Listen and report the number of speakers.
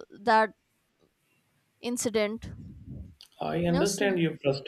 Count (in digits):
2